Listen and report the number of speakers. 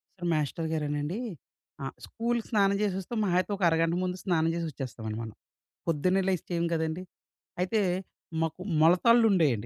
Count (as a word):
one